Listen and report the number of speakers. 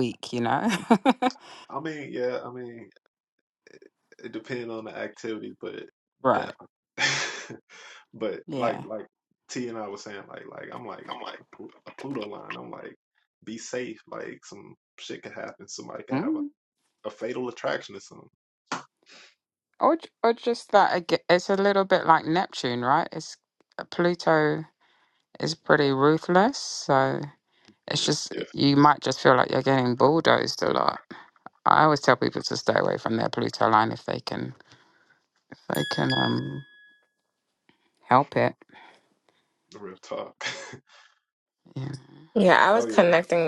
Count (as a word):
three